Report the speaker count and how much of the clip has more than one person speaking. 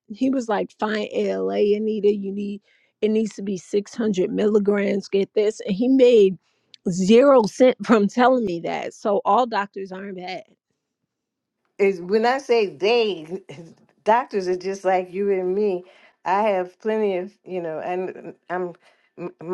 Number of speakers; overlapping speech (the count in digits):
2, no overlap